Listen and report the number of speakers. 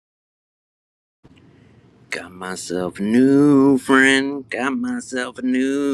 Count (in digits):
1